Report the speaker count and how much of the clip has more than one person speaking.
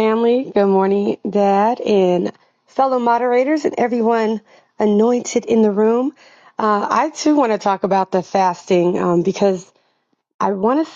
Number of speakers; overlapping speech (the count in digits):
1, no overlap